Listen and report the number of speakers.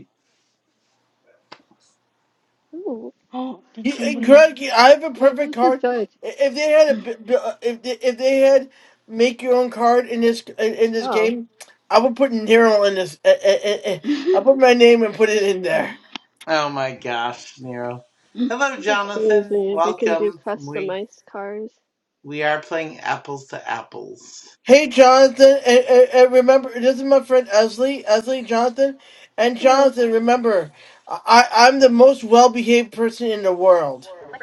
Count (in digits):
4